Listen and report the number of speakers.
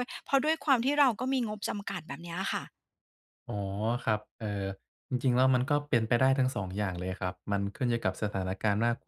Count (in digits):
2